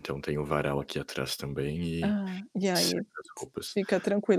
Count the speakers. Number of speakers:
2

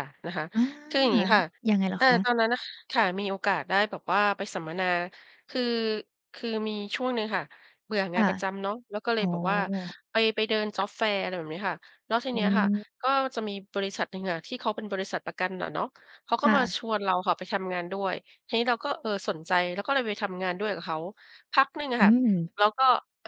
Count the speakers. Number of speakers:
2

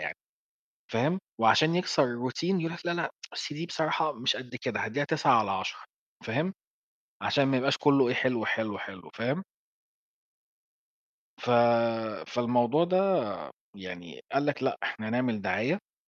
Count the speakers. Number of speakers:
1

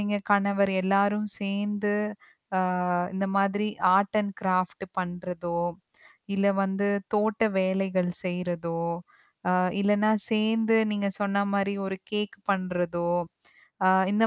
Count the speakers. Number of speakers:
1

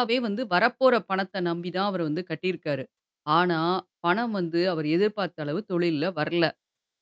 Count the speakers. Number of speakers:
1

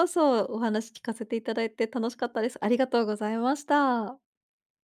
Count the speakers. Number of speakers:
1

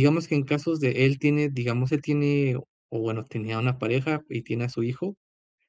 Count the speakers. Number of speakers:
1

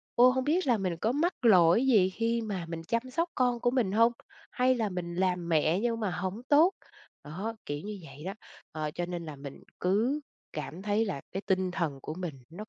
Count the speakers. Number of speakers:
1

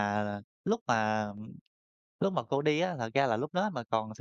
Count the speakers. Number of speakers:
1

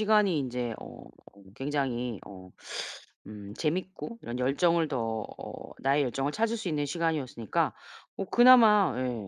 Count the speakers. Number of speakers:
1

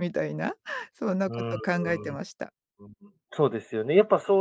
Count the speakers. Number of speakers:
2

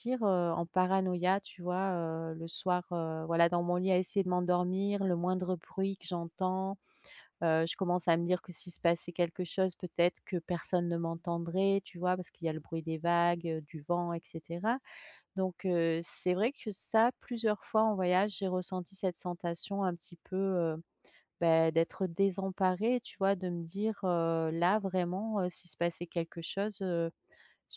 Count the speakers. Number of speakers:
1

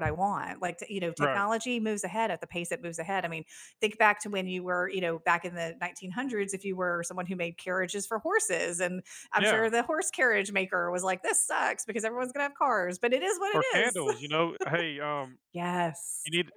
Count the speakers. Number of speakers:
2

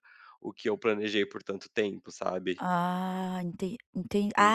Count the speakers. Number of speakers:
2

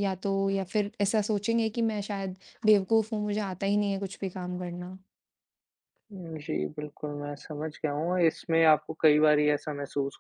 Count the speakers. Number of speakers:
2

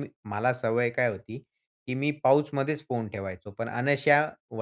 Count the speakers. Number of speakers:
1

